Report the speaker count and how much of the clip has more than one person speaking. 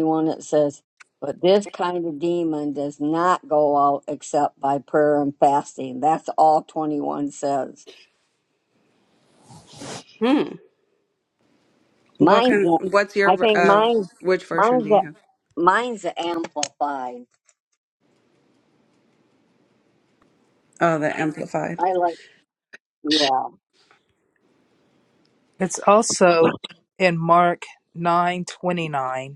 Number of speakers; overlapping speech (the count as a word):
three, about 6%